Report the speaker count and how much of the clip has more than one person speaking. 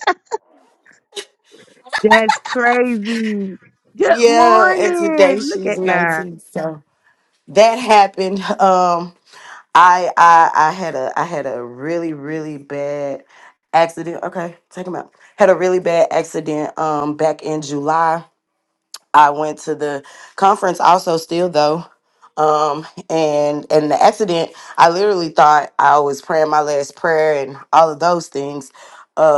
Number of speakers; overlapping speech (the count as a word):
two, about 7%